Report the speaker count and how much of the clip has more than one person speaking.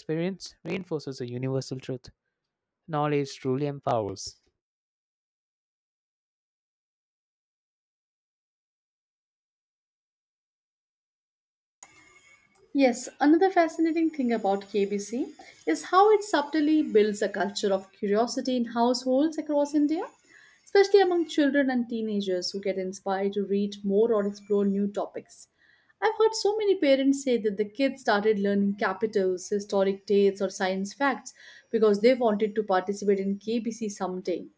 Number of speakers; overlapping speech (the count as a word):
two, no overlap